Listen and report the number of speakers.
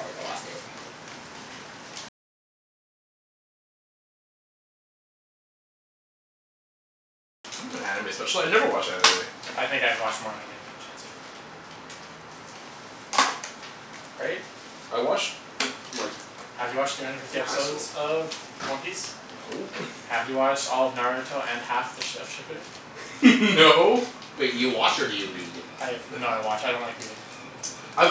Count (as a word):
three